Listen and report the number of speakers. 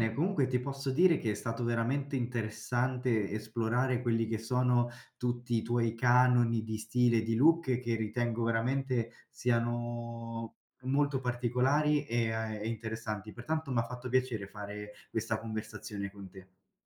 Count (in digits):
1